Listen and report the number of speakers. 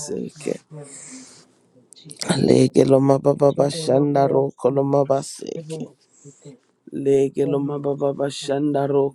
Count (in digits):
2